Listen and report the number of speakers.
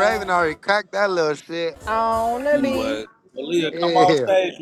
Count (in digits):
3